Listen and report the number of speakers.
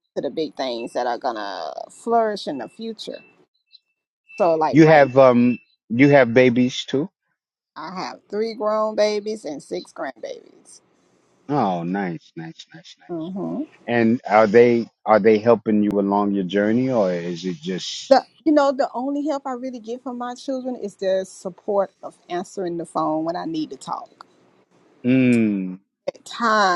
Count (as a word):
two